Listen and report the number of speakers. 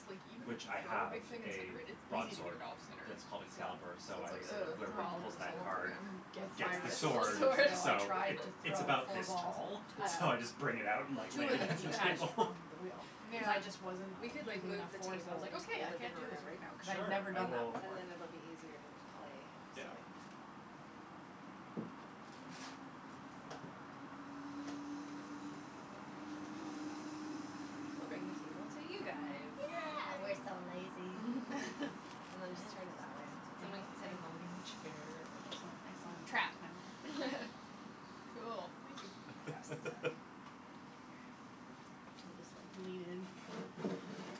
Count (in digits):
4